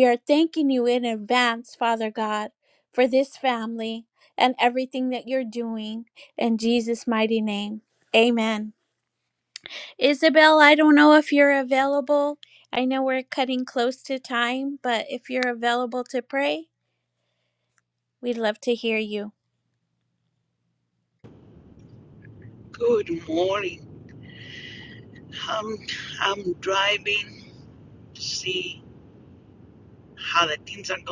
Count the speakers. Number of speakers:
two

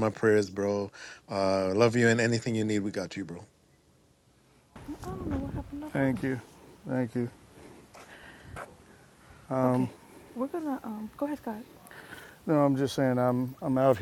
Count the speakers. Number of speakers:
three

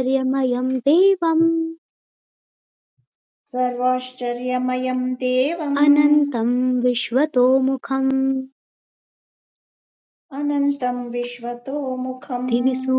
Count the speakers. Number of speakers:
two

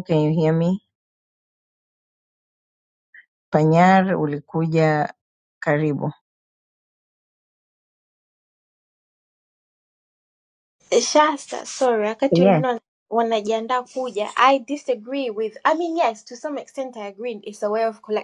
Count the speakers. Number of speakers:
two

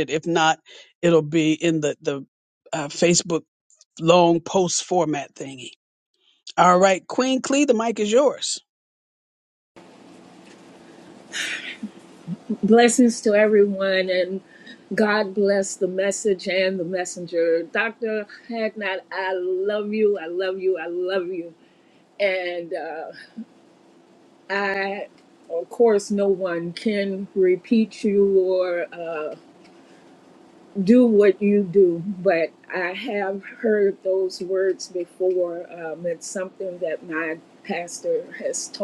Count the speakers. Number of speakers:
two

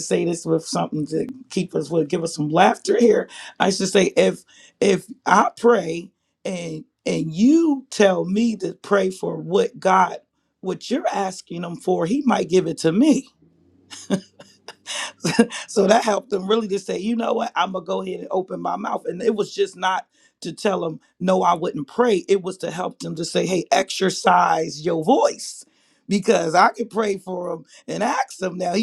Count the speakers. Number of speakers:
one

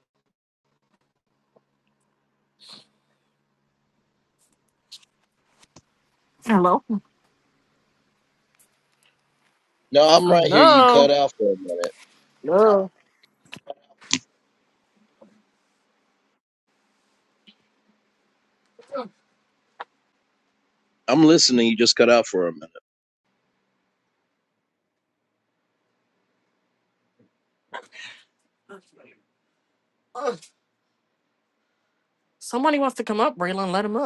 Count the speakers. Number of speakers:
two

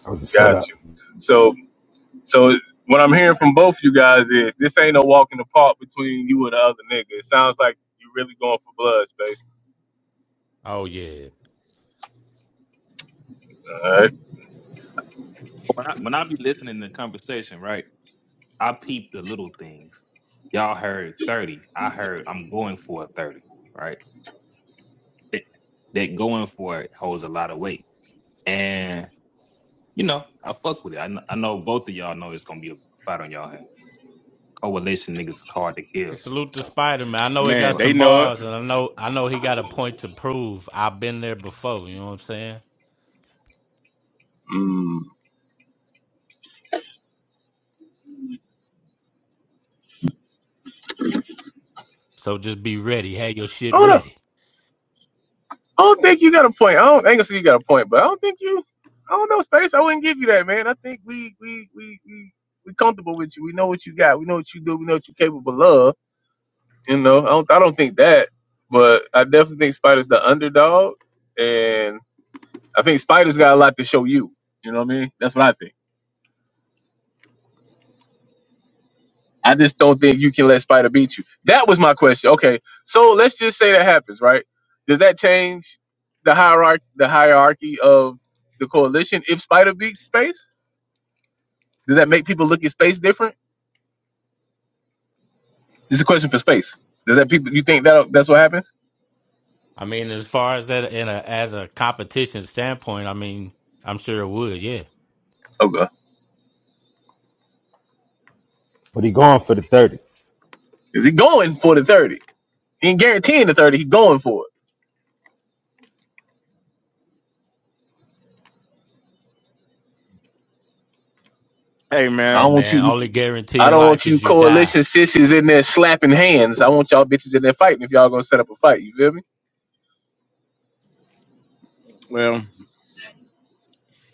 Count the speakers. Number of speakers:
five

